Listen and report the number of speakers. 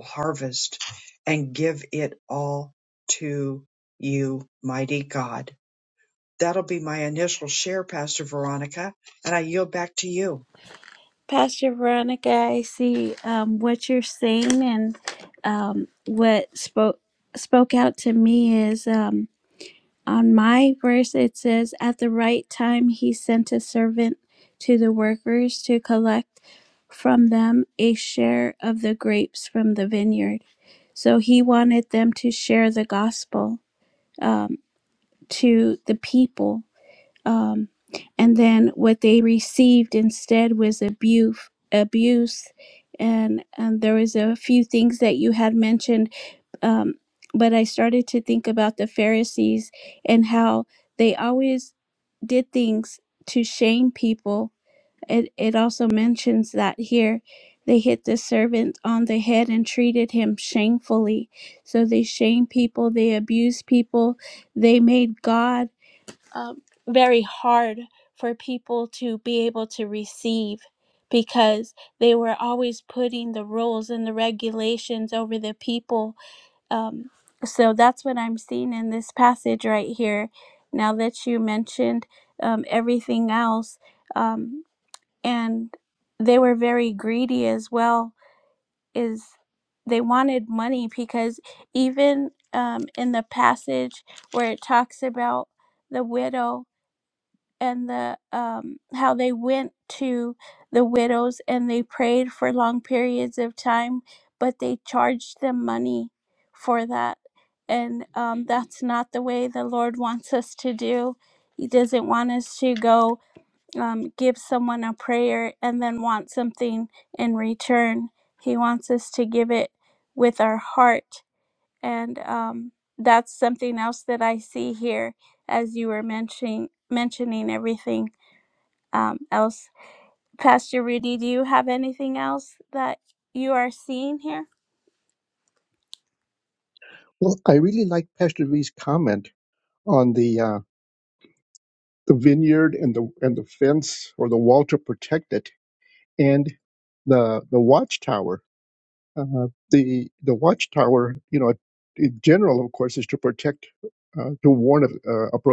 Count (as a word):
three